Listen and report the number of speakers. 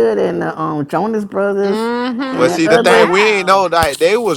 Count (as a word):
three